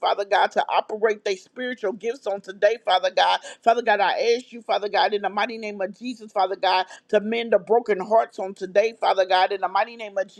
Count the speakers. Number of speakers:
1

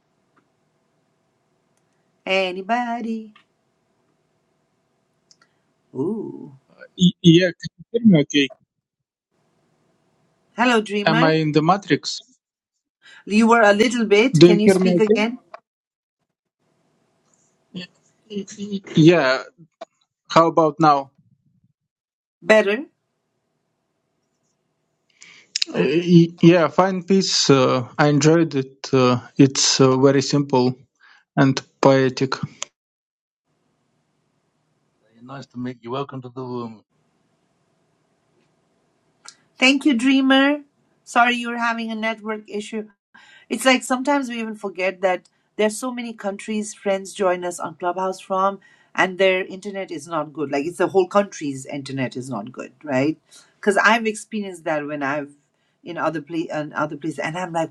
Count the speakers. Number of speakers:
3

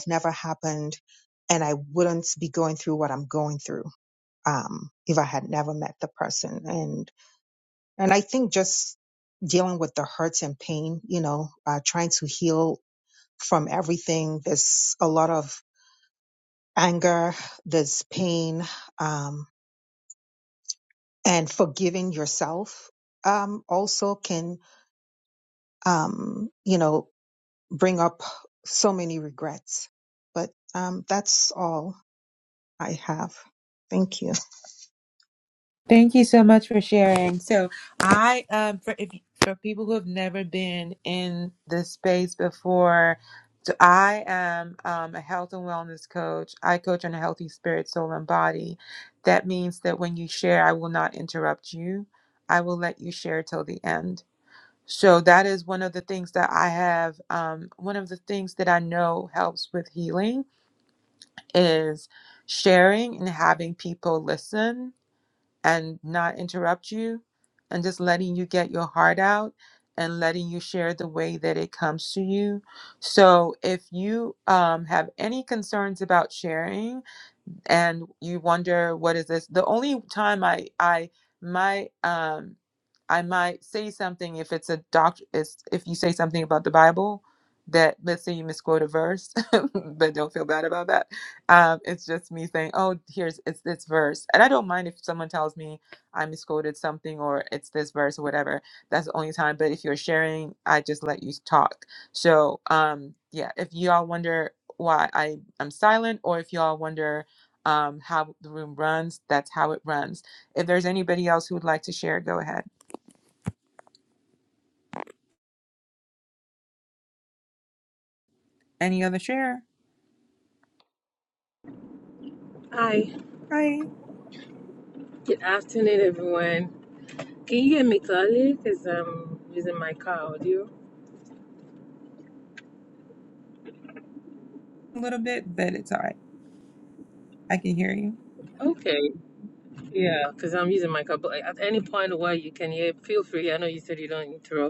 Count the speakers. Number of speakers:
3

